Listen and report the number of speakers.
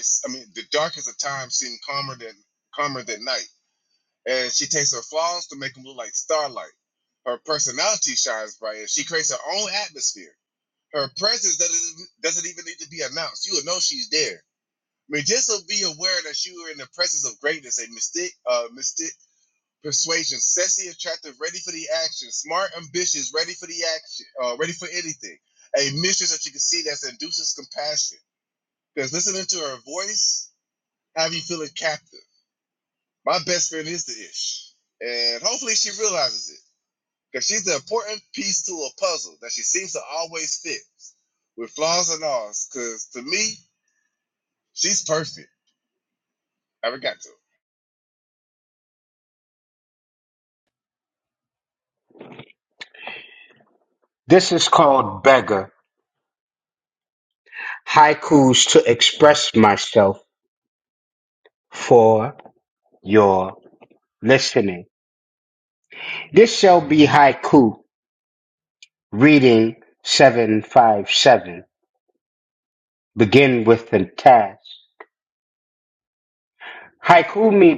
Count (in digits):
2